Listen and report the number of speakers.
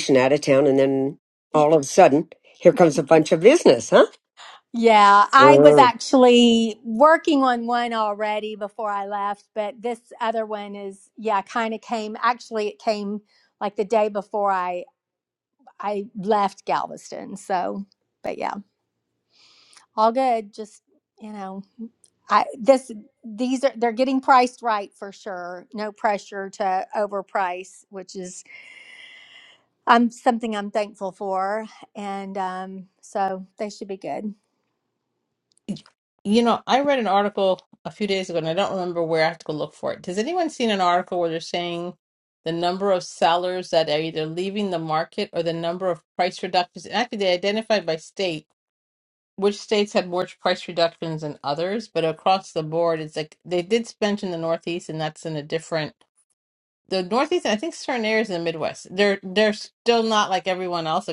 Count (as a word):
three